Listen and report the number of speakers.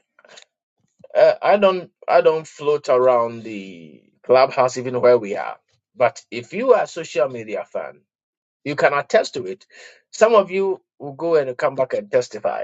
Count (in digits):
1